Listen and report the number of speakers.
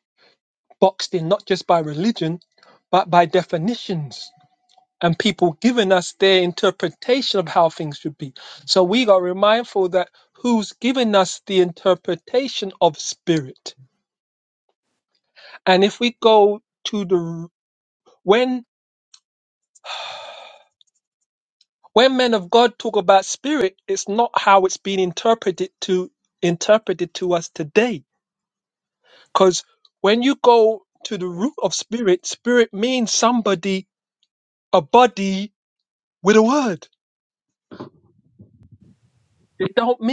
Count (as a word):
one